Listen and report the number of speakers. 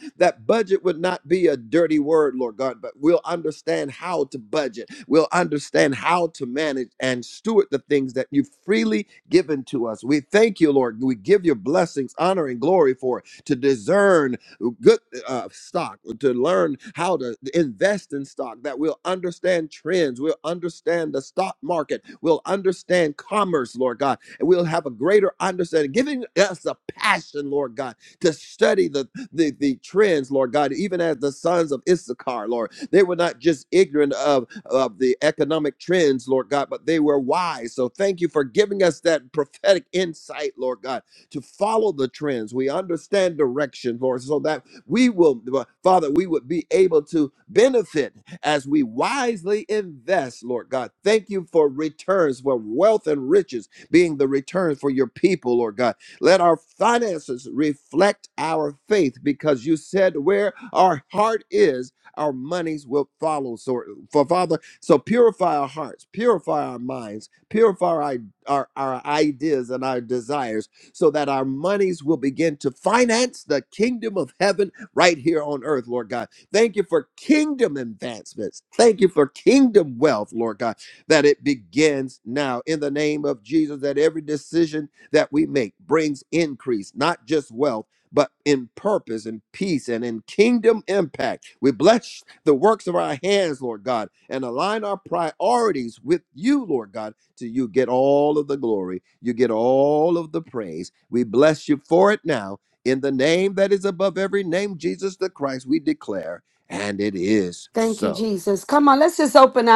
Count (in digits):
2